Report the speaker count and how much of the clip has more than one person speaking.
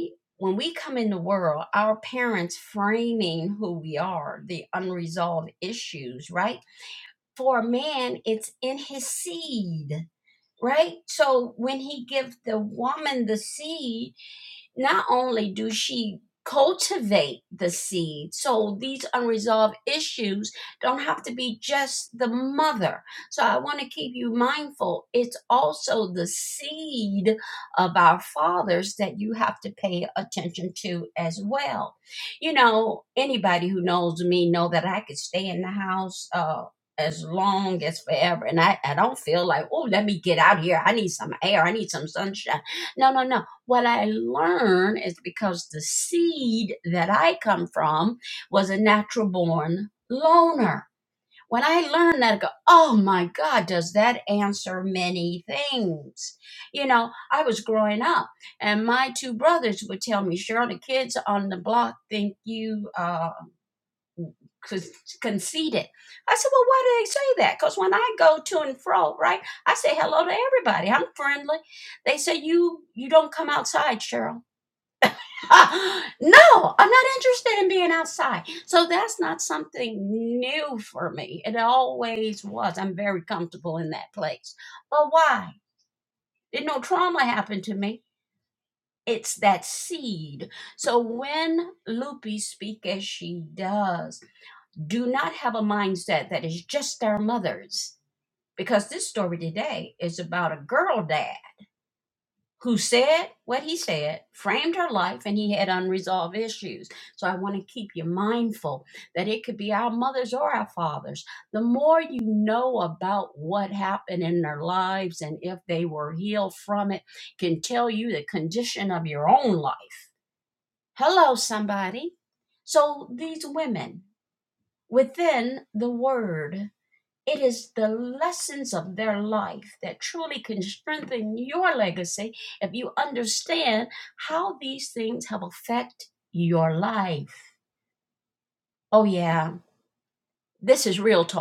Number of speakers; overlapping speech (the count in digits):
1, no overlap